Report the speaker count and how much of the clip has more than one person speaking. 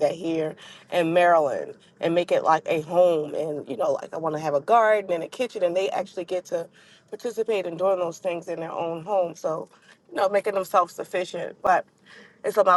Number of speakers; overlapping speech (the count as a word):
one, no overlap